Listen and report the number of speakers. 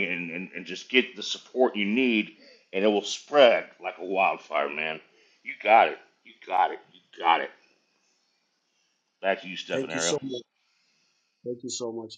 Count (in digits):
2